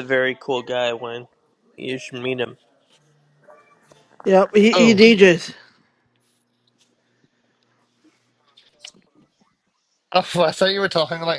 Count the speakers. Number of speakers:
3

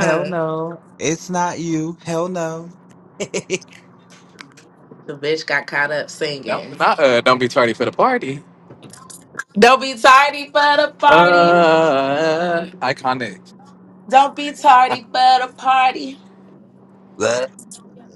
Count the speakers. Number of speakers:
3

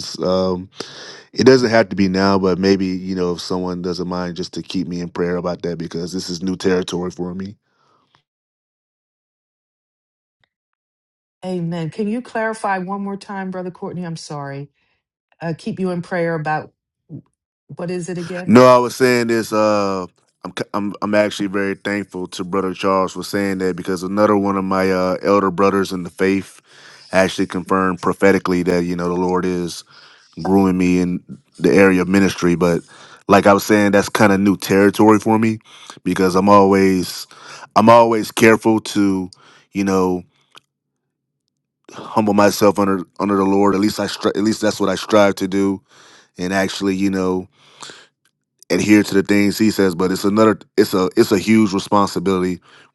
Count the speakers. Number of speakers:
2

